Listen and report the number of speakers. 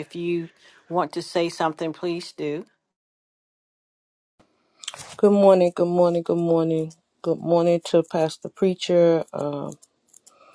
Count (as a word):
two